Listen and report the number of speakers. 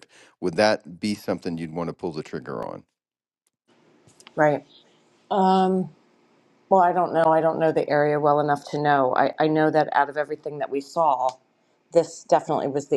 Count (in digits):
2